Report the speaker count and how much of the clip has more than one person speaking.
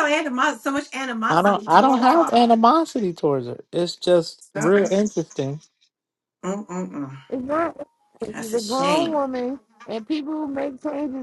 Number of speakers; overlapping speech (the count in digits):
3, about 20%